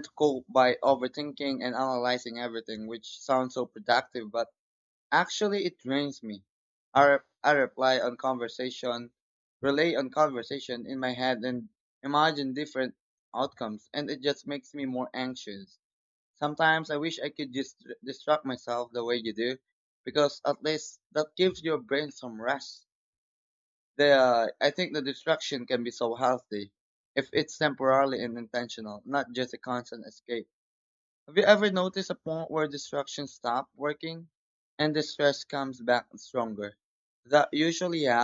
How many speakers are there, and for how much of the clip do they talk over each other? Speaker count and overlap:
one, no overlap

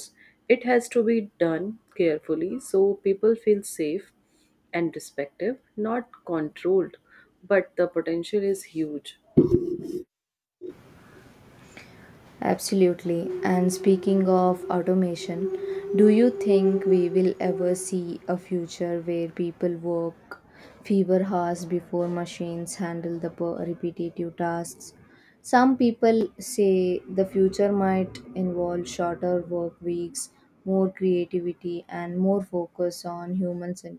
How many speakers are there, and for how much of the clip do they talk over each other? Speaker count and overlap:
two, no overlap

